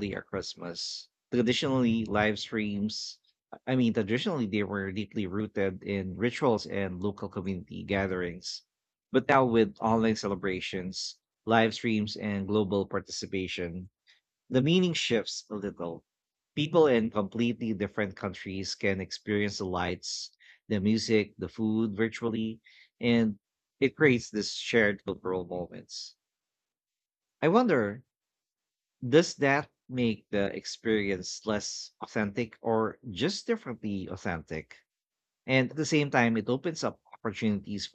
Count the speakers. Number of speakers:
one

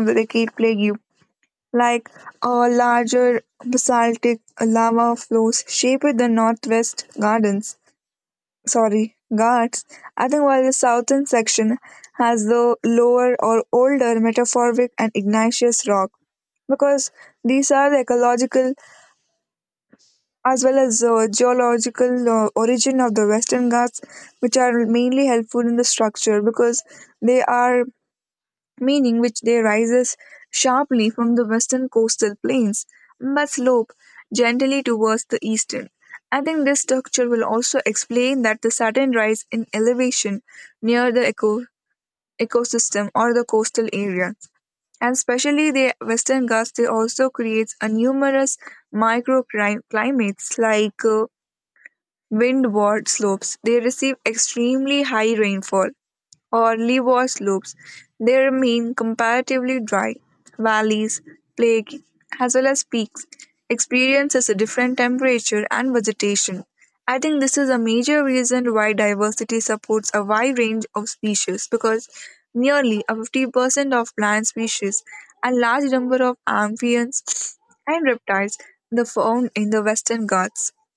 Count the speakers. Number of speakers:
one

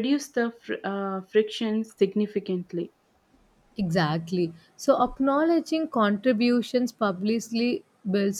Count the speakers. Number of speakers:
two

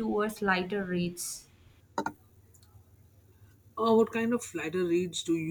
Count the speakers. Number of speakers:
two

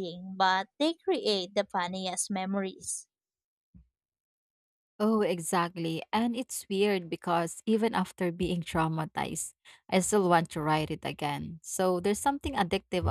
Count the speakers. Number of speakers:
two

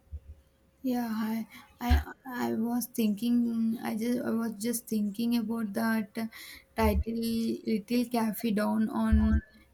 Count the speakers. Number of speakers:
one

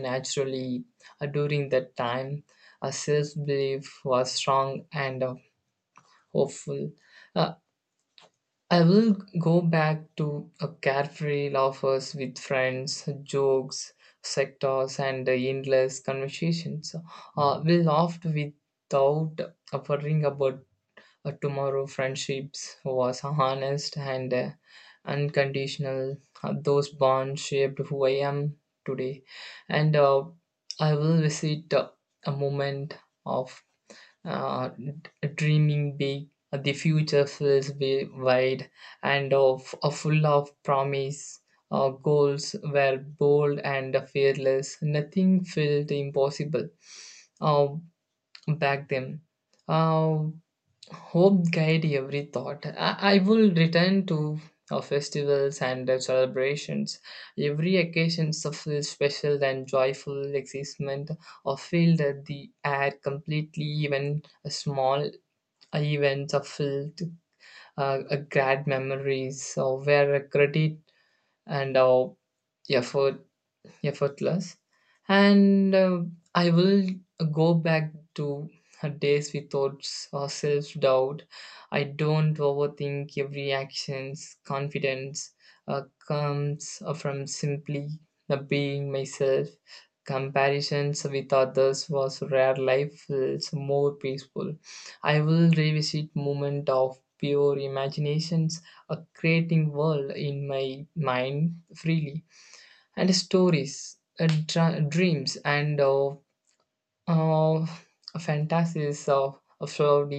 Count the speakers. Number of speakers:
one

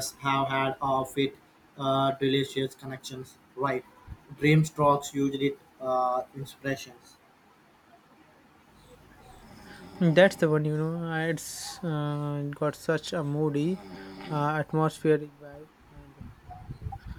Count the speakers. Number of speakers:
two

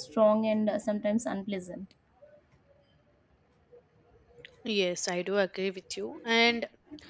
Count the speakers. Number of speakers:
two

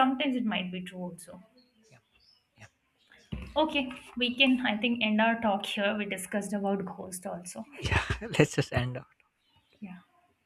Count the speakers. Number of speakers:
two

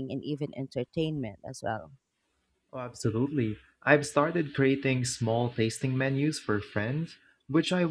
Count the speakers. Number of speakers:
two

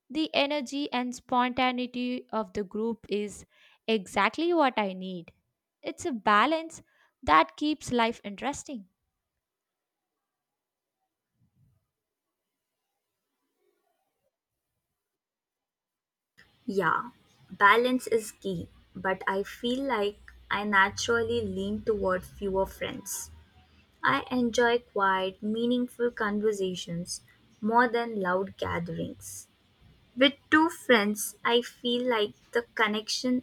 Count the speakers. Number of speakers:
two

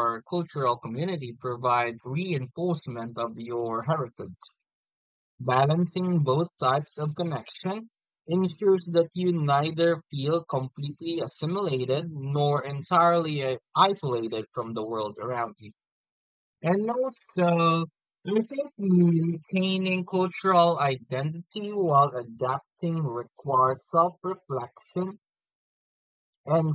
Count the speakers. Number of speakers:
one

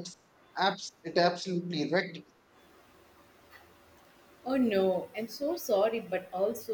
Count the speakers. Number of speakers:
two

